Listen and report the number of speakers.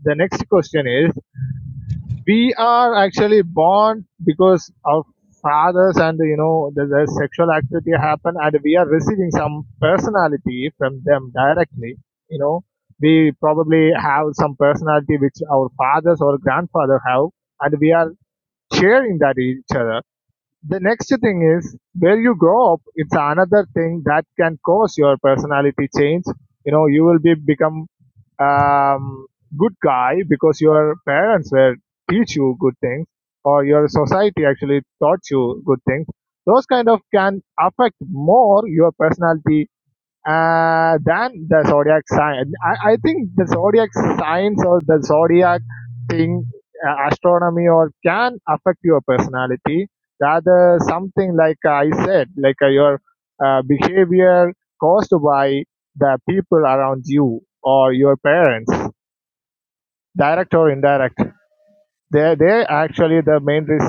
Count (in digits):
1